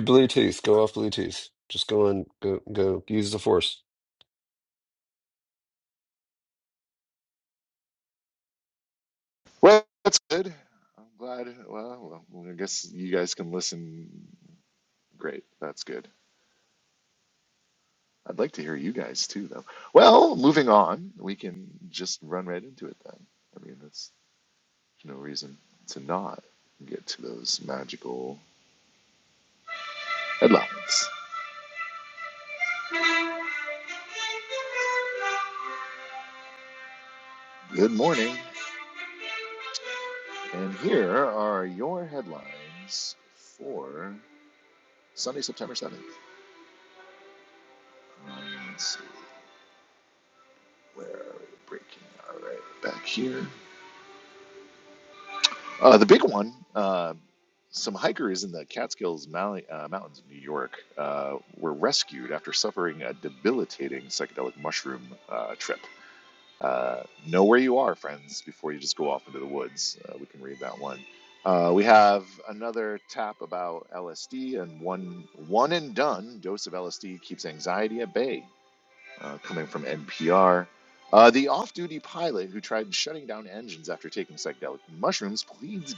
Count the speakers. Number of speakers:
two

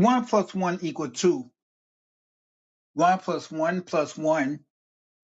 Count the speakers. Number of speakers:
one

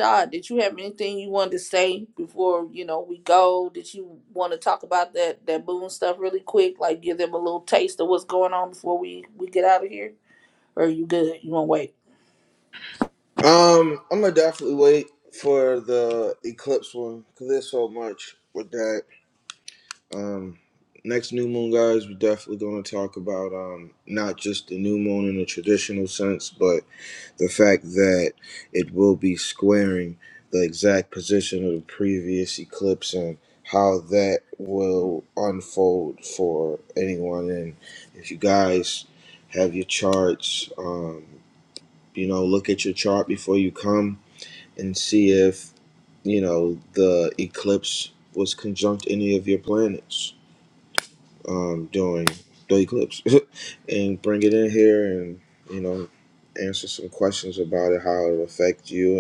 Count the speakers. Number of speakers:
two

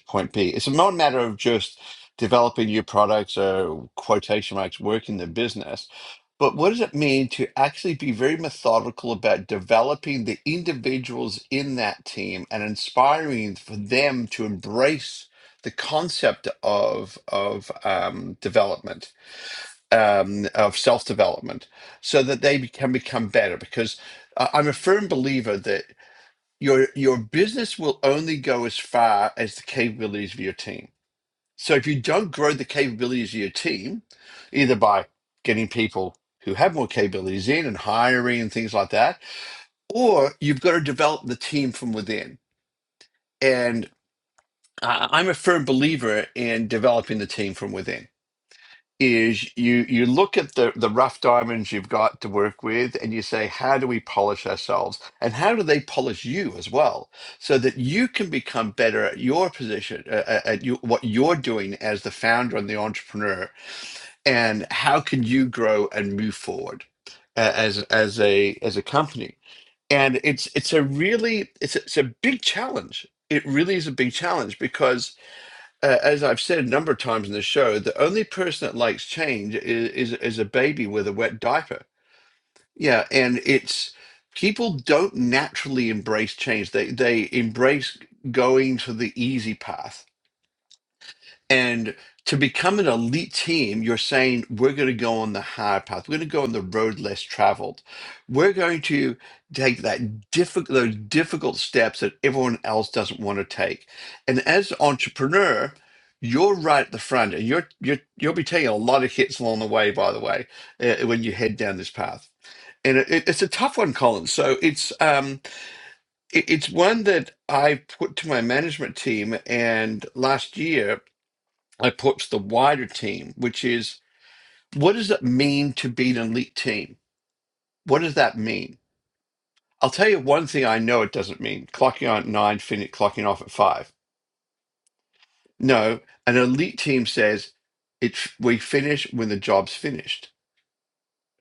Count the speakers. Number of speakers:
one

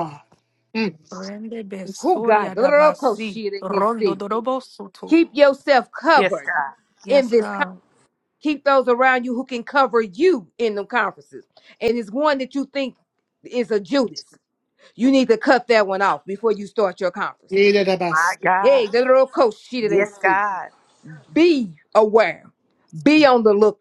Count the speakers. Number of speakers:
four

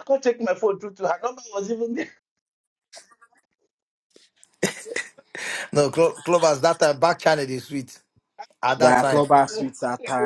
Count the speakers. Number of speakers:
three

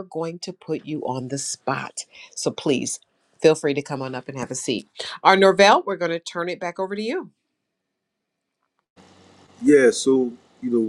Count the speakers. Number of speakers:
two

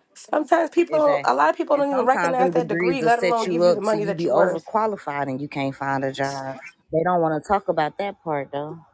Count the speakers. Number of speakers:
two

